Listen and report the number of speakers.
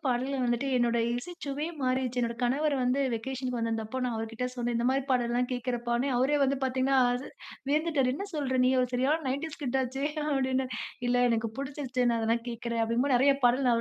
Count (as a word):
one